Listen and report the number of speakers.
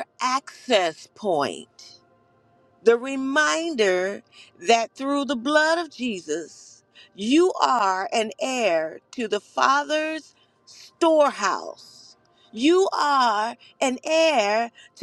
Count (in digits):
1